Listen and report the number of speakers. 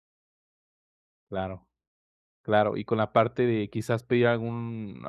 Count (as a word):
one